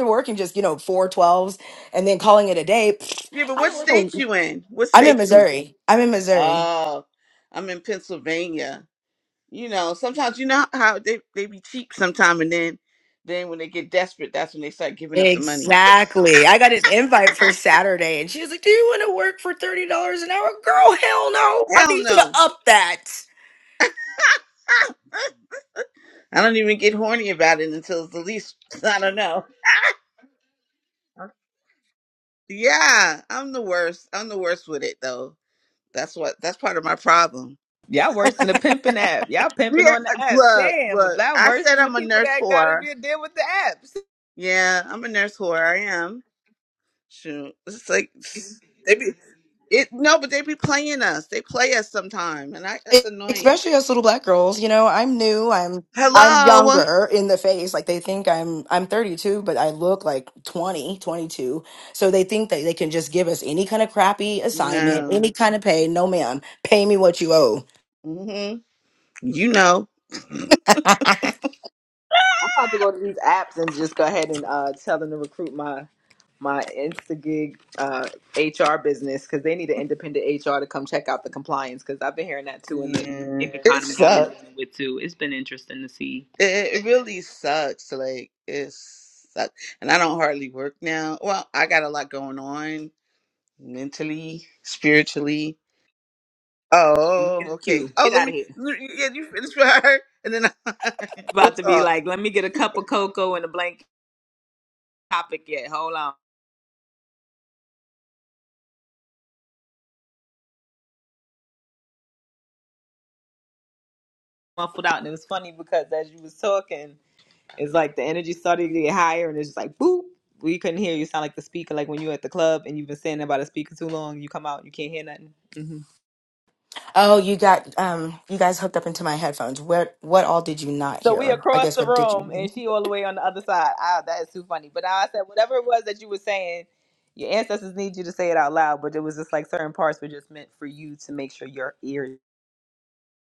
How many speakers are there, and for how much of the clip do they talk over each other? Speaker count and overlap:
3, about 9%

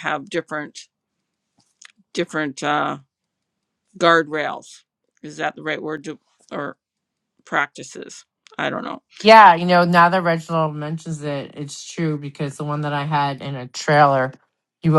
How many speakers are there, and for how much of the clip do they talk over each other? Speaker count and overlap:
2, no overlap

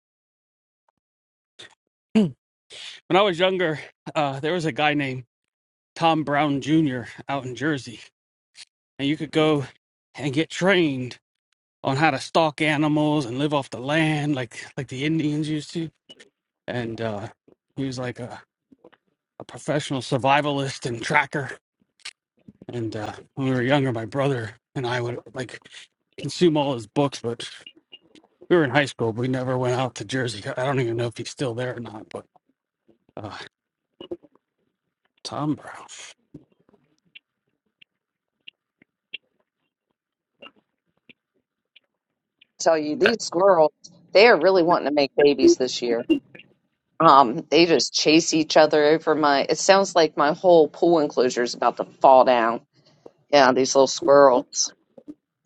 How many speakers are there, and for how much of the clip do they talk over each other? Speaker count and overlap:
2, no overlap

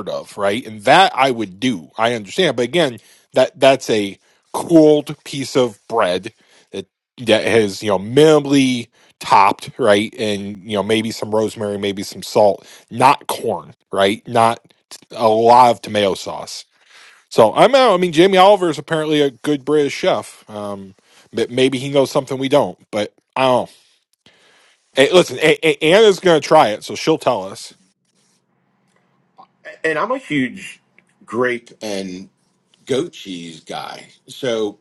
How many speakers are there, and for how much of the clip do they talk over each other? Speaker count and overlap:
2, no overlap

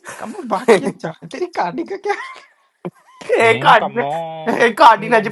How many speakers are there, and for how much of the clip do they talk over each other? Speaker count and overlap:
3, about 17%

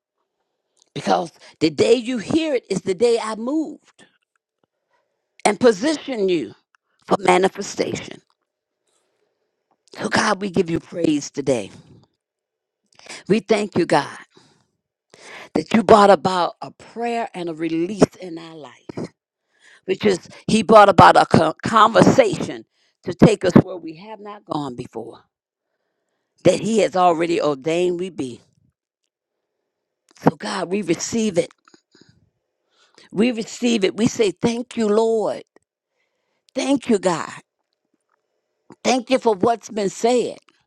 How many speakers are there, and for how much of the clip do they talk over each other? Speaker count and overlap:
1, no overlap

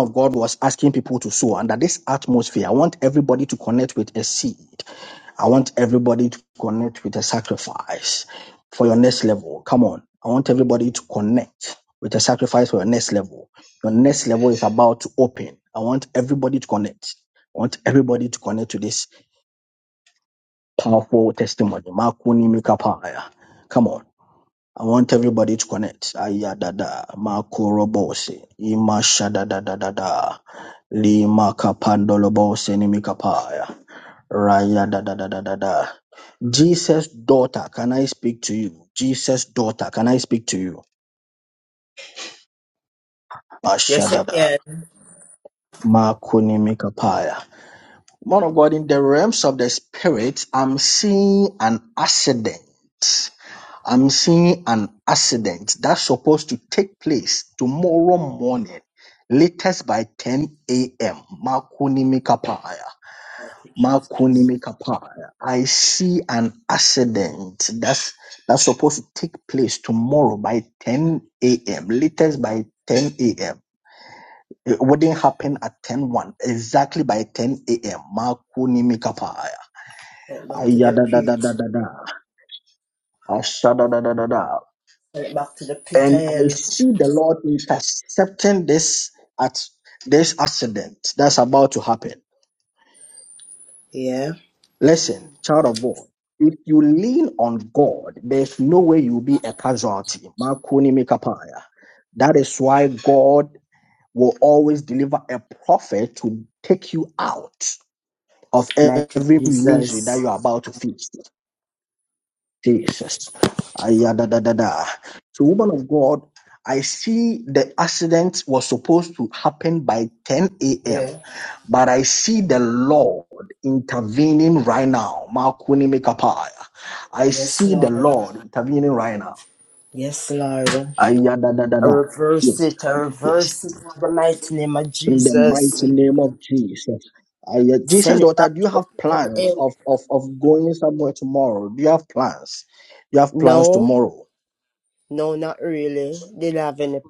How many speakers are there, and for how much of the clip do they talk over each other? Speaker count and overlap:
2, about 6%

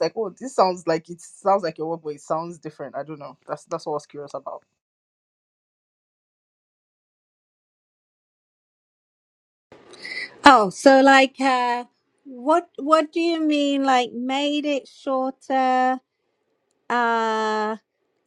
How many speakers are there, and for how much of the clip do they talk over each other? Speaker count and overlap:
2, no overlap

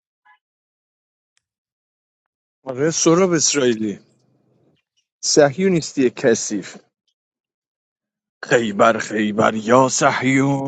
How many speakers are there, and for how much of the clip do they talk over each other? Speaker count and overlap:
1, no overlap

